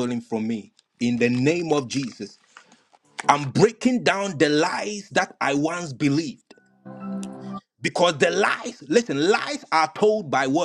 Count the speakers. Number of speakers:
one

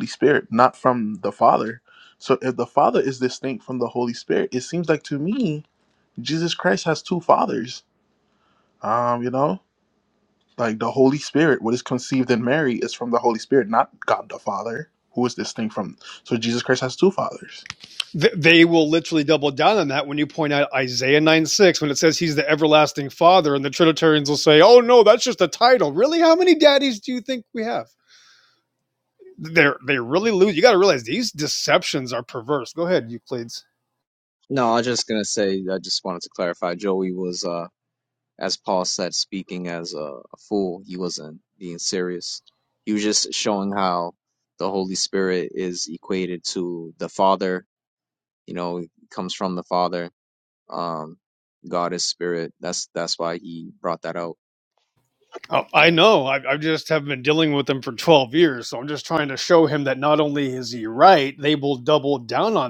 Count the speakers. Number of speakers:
three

